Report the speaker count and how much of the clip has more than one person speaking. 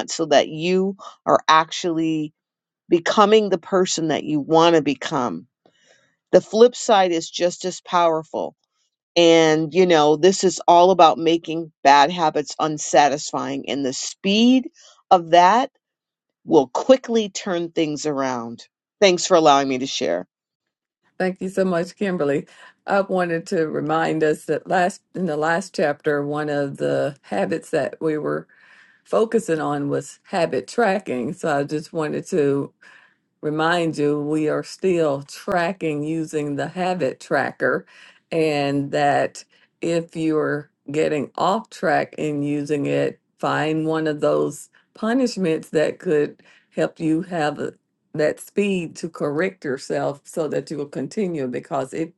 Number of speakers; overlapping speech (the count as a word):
two, no overlap